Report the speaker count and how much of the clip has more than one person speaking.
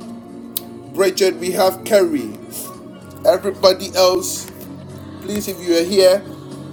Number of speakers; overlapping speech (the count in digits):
1, no overlap